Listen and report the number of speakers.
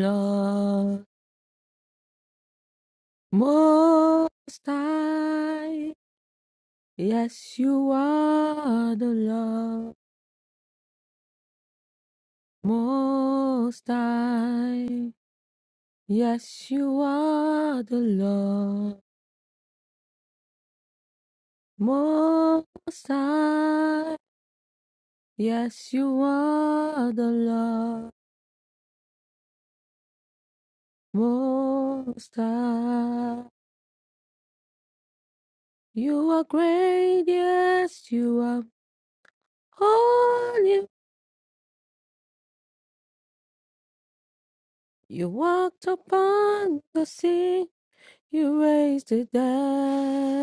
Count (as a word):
one